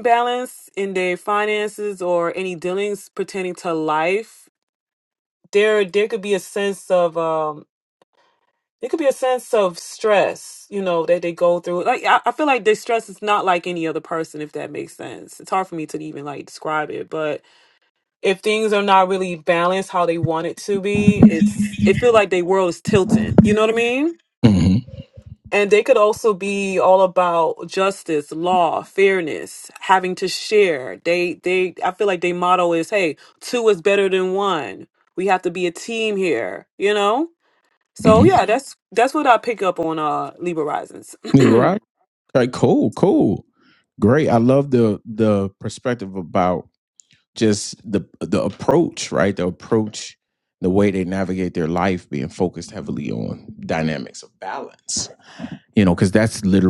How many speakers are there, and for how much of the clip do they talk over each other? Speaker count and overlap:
2, under 1%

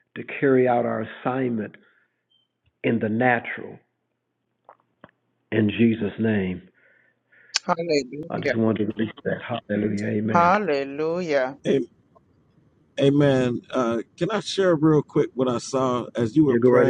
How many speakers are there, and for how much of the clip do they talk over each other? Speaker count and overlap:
3, about 5%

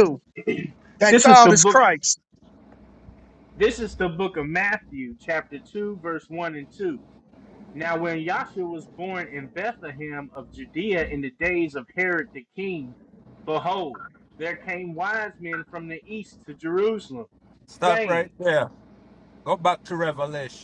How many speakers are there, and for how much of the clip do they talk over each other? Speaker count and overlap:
3, about 5%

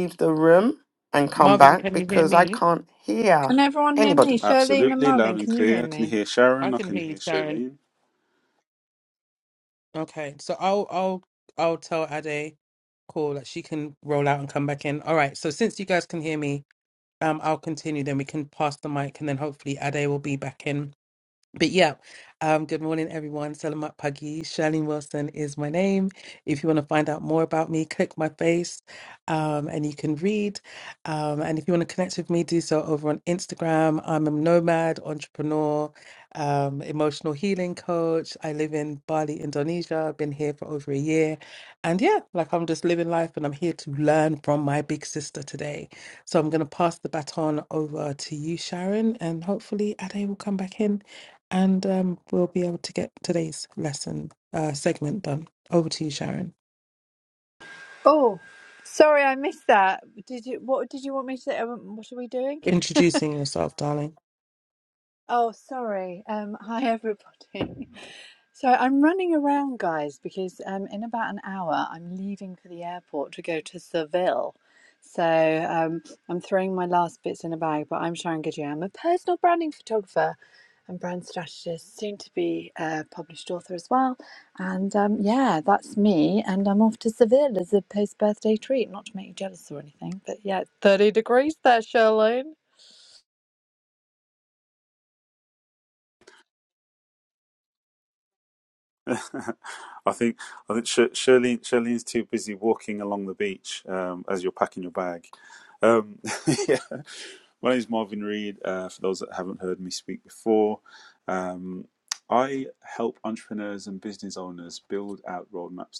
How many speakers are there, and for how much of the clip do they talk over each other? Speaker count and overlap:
4, about 4%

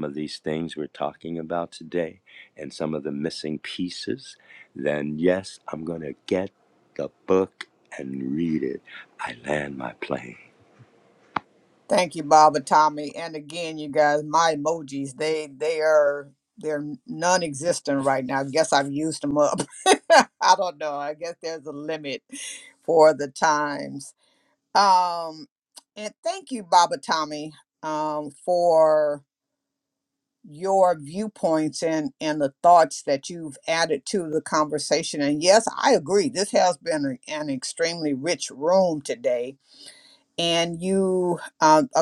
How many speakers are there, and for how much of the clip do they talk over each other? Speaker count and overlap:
2, no overlap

